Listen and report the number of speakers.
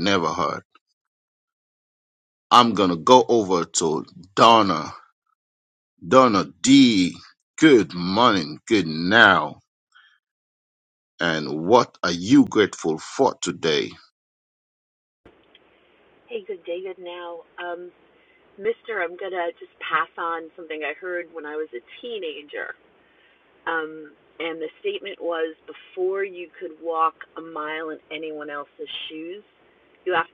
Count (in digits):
2